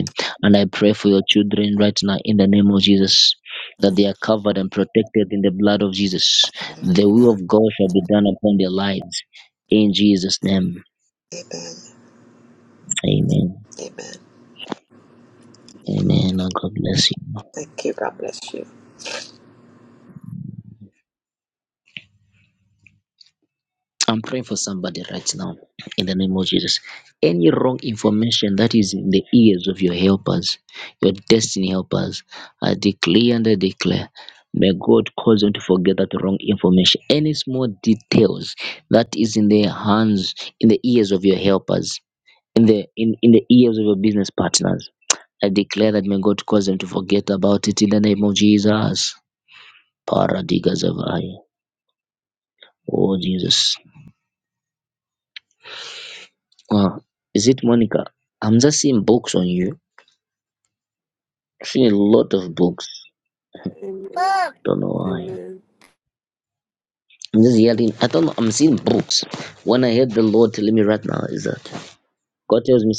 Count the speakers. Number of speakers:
three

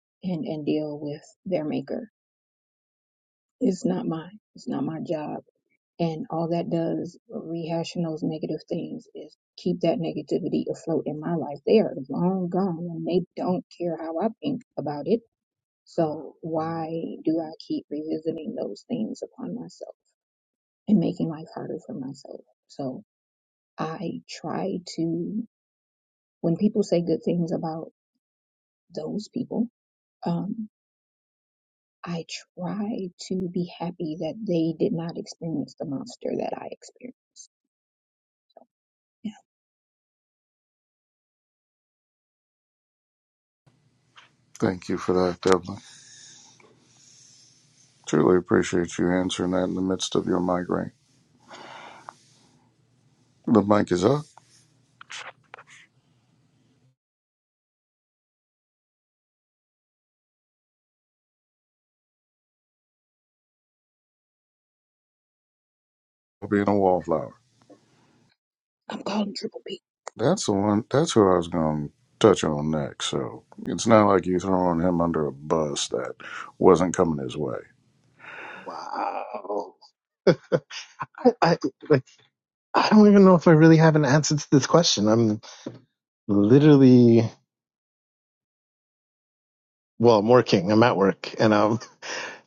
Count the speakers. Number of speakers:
three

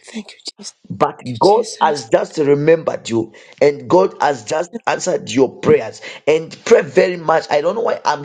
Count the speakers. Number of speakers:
two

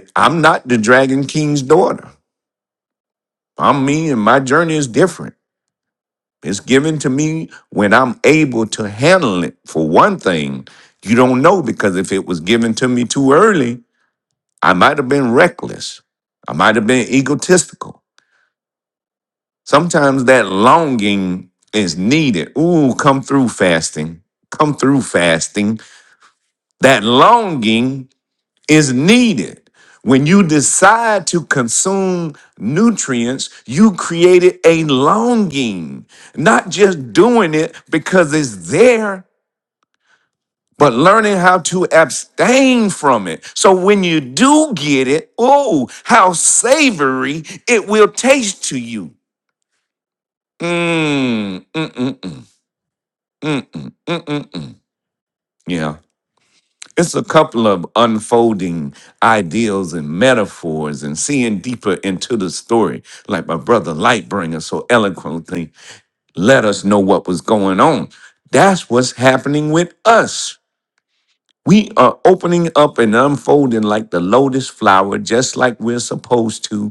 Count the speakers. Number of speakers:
one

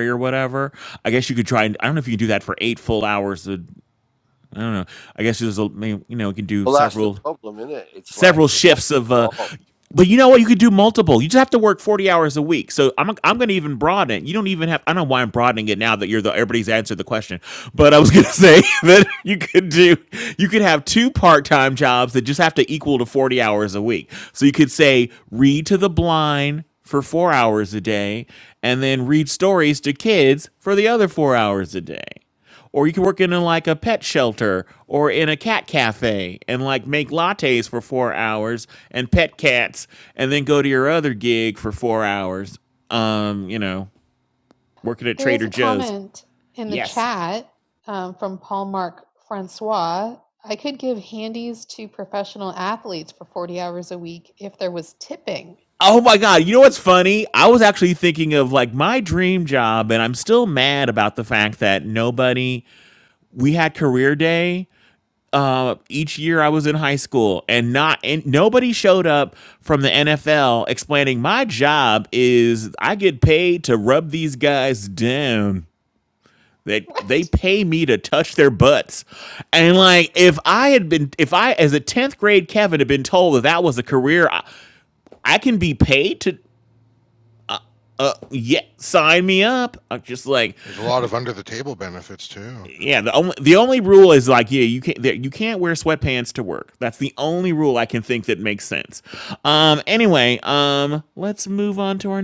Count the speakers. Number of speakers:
four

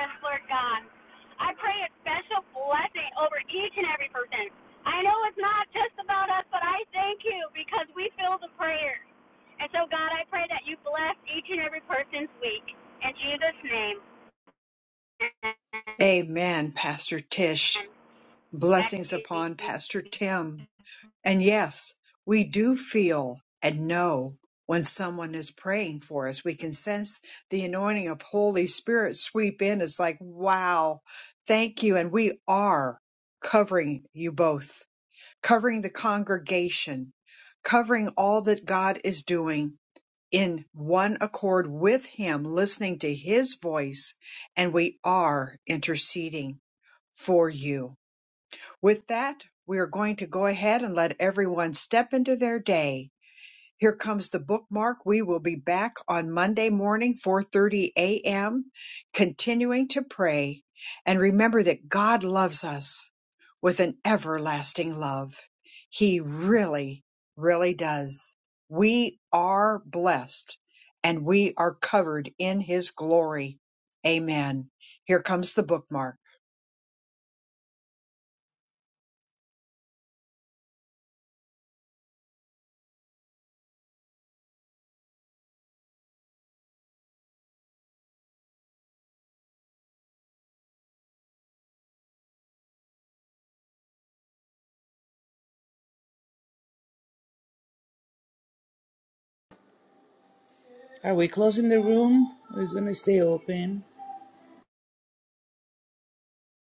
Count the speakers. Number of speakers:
three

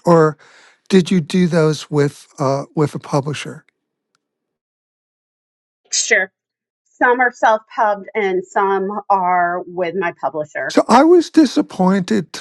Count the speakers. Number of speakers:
two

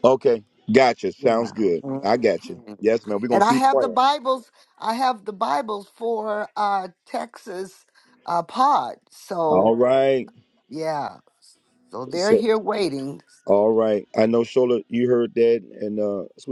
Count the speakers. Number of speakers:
two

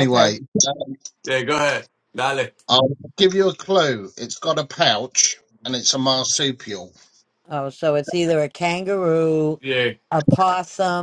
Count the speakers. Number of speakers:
three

